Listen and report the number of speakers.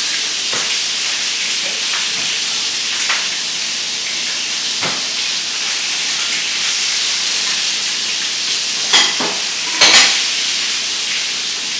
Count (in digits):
0